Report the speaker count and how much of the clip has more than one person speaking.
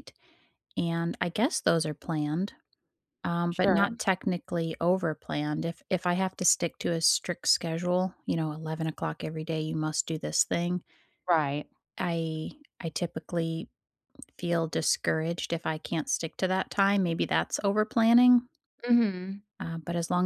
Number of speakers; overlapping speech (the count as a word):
two, about 2%